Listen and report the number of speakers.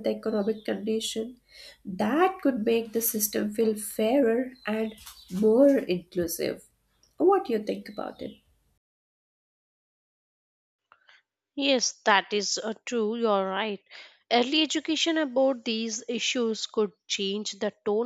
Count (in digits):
2